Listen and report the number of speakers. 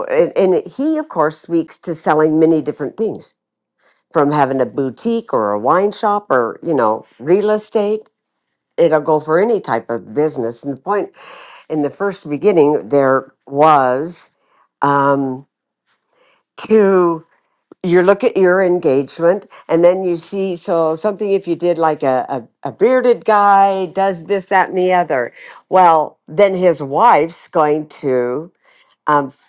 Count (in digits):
1